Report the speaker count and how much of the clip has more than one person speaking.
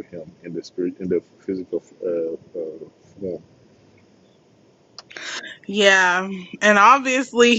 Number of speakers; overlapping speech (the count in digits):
2, no overlap